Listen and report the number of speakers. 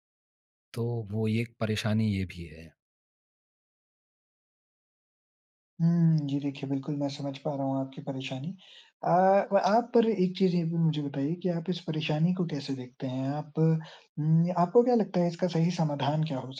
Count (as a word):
two